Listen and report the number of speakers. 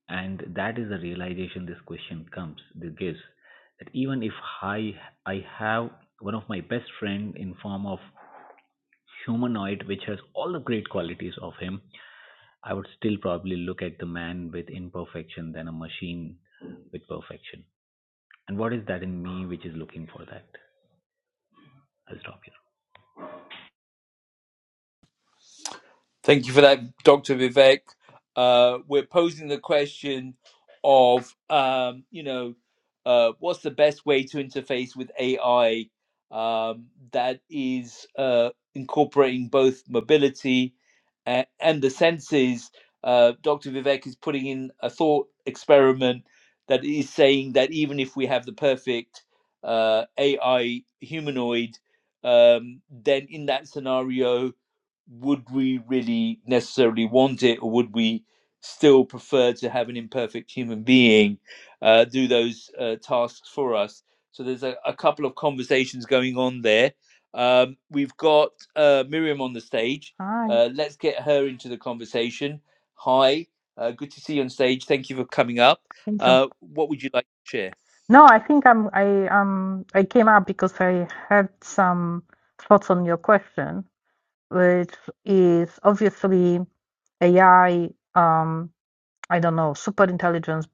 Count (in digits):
3